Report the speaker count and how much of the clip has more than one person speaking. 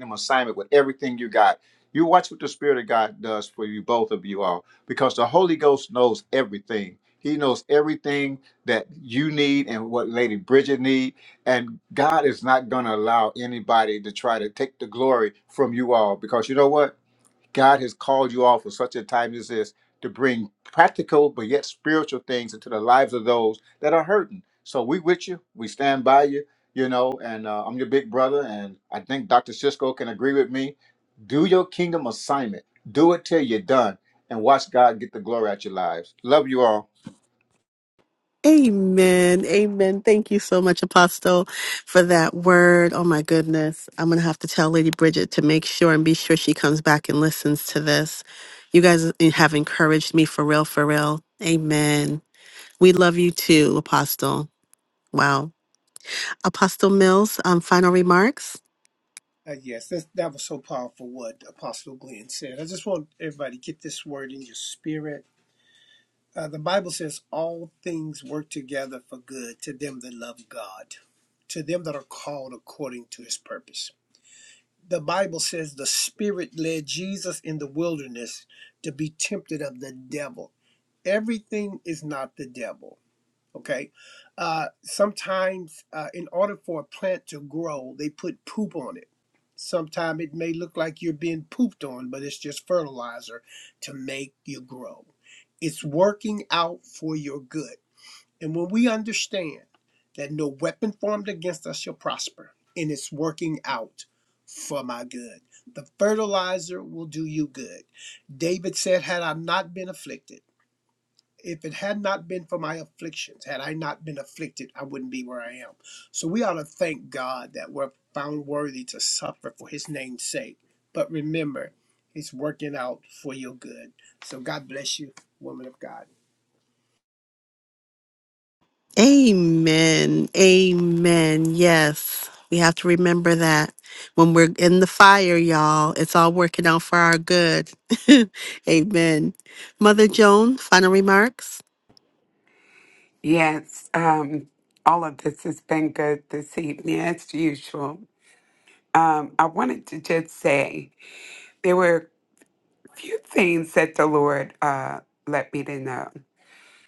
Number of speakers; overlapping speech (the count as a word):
four, no overlap